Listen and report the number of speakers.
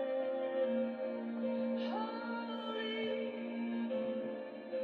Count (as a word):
zero